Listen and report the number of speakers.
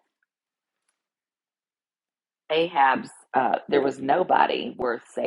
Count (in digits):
1